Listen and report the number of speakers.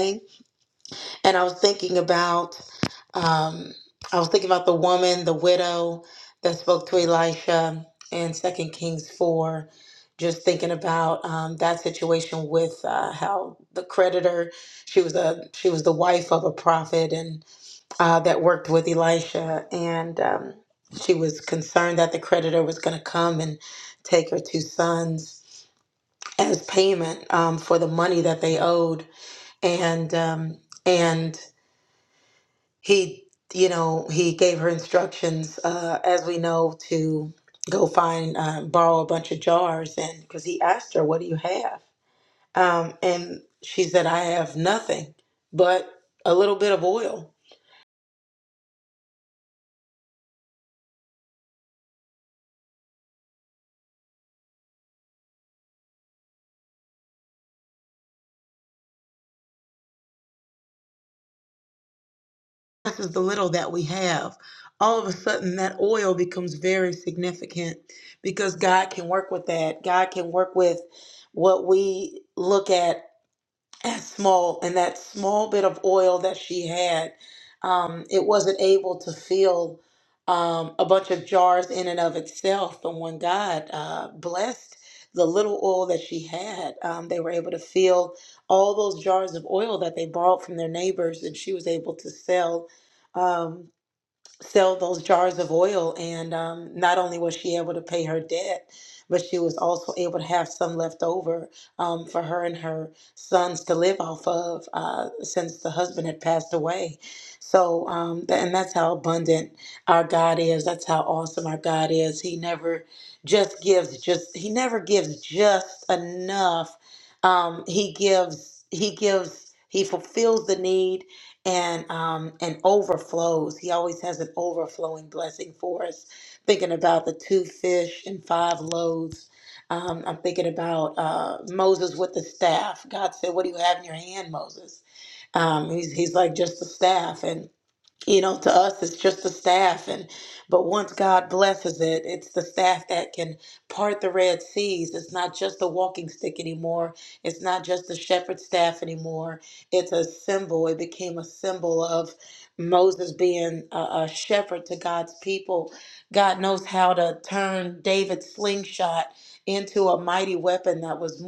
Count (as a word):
one